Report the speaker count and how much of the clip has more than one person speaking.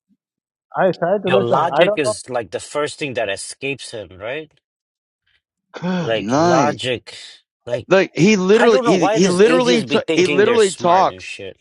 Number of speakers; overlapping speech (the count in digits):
3, about 36%